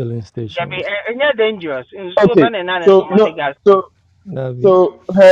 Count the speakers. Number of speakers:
three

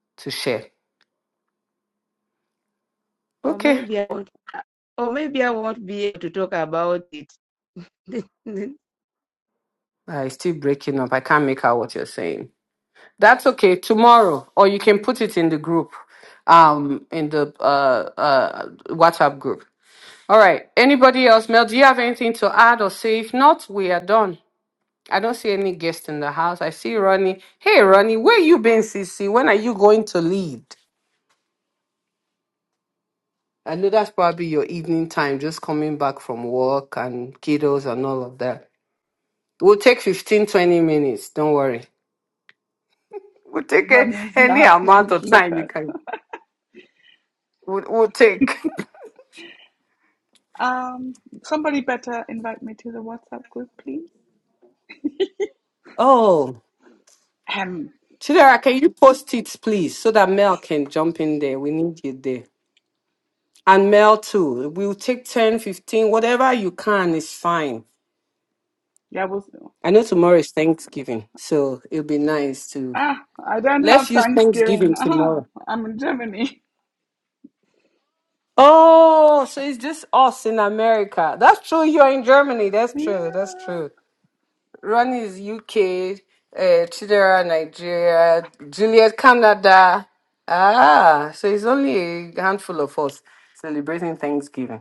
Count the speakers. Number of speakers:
three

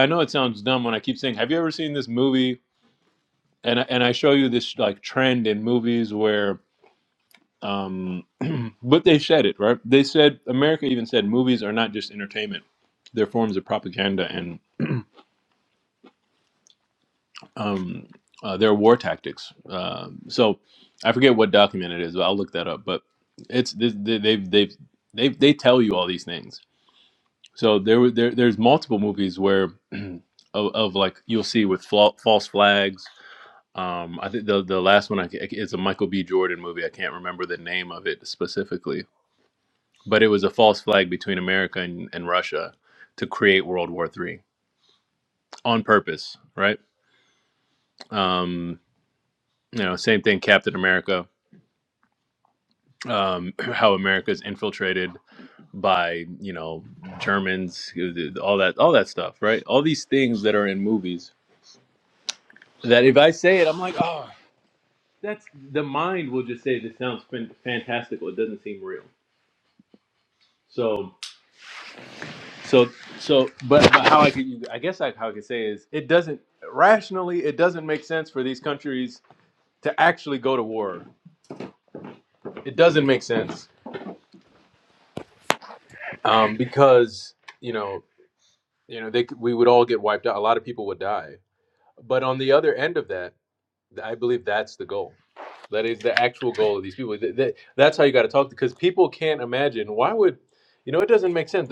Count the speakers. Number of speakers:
one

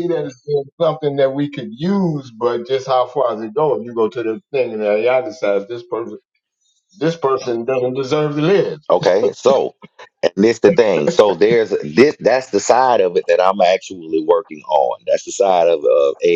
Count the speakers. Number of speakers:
two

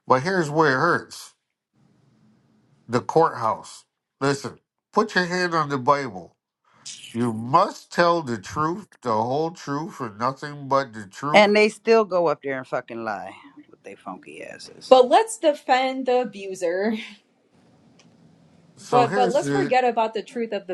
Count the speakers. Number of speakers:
three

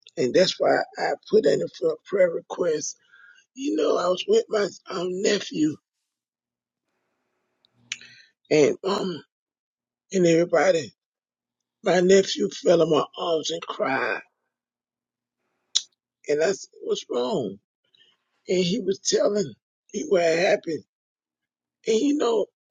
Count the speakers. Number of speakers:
one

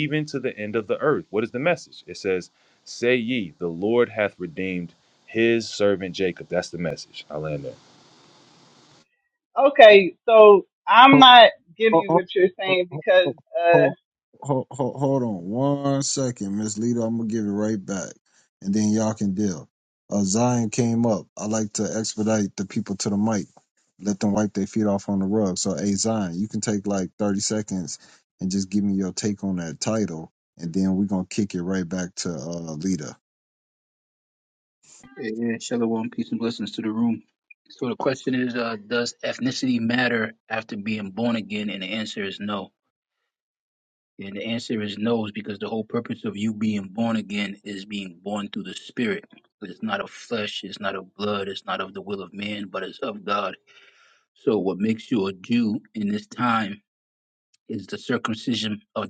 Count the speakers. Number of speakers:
four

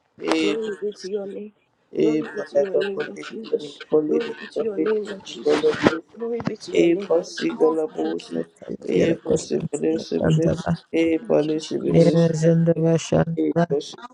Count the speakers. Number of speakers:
three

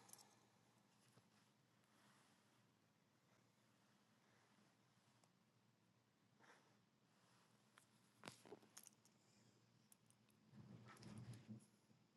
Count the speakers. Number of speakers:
zero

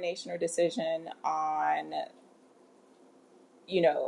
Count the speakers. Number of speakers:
one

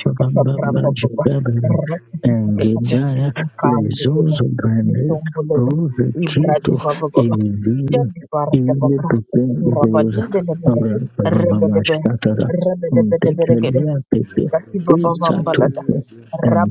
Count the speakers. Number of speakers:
two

